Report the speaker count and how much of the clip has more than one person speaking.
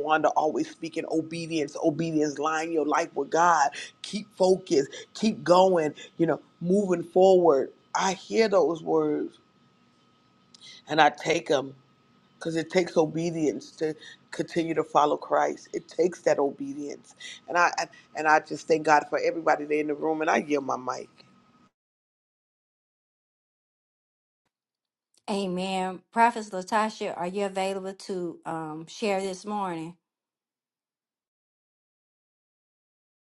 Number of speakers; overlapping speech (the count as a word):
two, no overlap